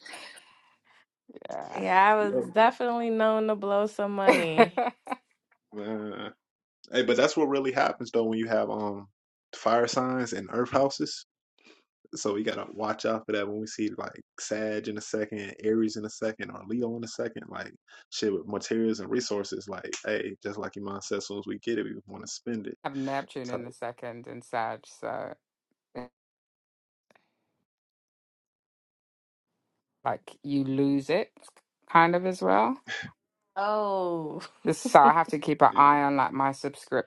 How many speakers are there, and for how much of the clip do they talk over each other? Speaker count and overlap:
3, about 3%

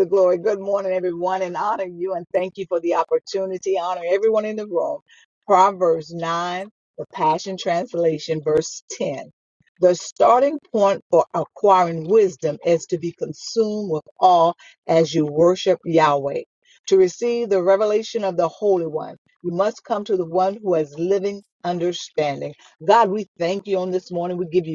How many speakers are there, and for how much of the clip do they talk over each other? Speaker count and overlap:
1, no overlap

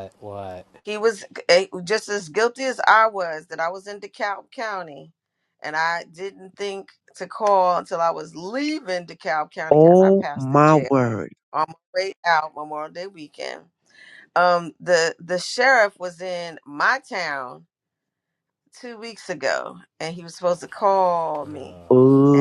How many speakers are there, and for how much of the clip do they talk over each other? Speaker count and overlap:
3, about 7%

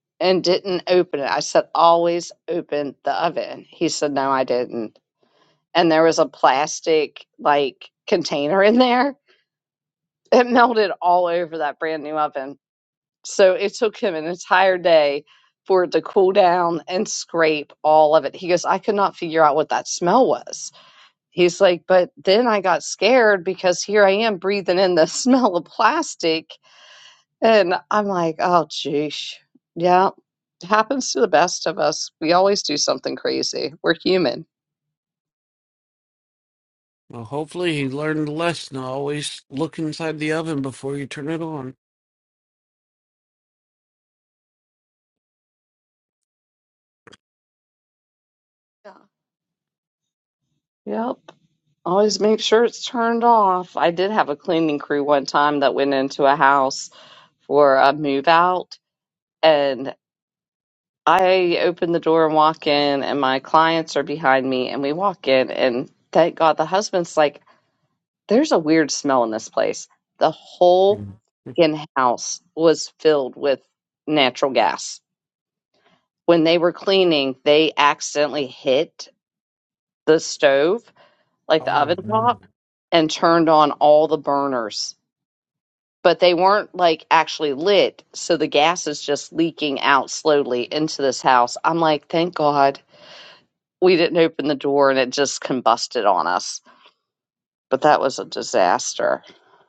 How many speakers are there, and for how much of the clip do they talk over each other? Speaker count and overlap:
2, about 1%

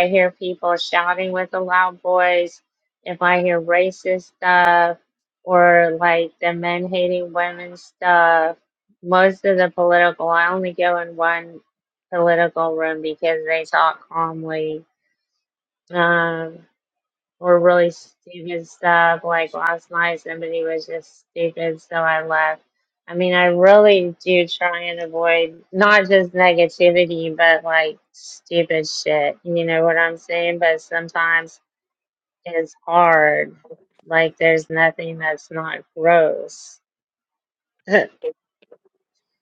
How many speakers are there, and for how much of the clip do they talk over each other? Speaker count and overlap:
1, no overlap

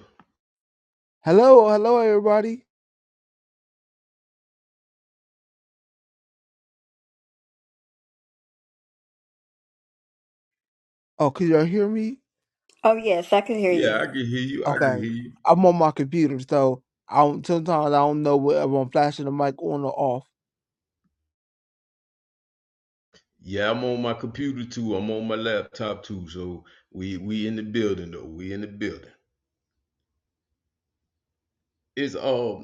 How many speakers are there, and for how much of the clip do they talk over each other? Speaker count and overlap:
3, about 2%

